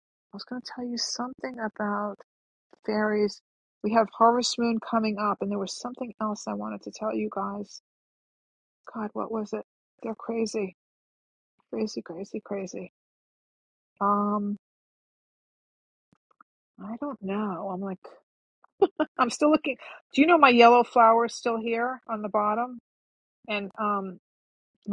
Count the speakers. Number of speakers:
1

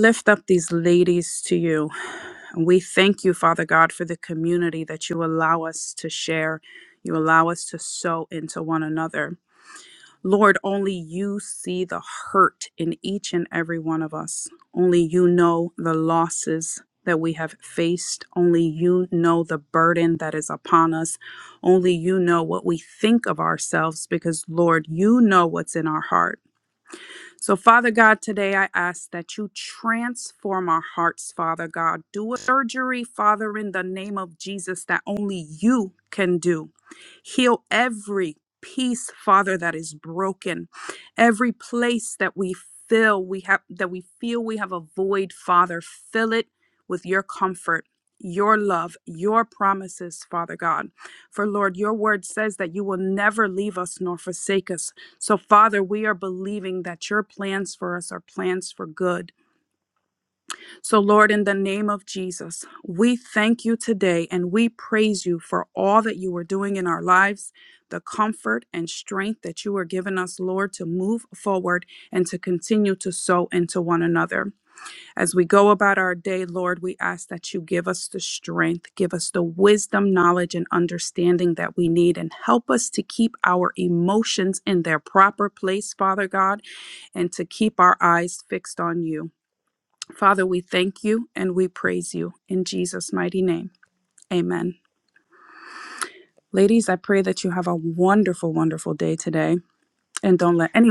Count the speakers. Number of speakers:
1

